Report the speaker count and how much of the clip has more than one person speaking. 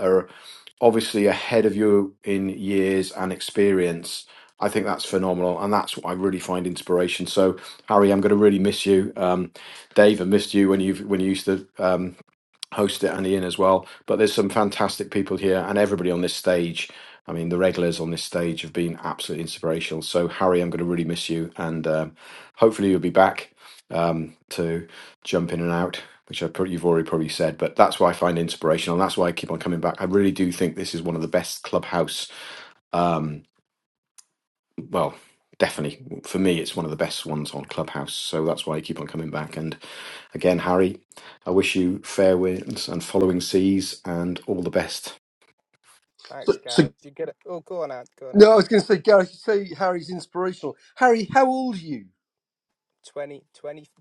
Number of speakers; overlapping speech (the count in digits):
3, about 1%